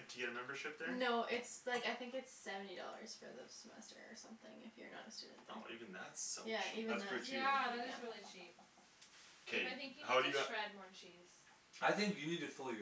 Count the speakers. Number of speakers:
4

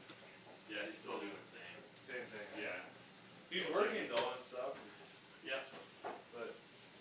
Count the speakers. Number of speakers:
2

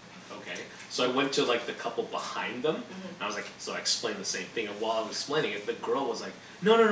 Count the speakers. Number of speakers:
1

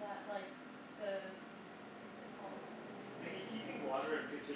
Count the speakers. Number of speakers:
2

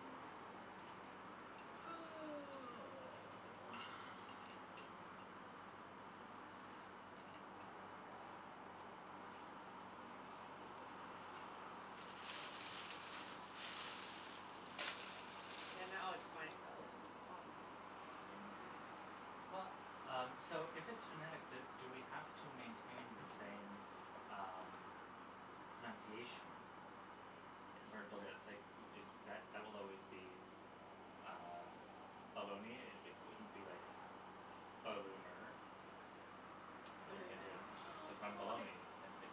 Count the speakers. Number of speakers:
3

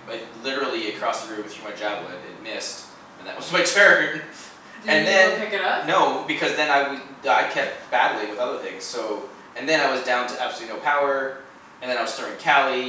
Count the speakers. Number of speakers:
2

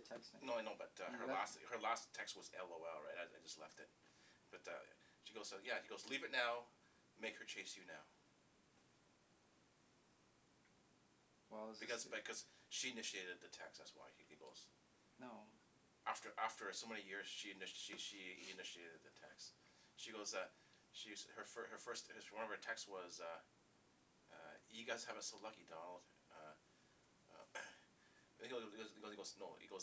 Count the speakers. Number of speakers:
2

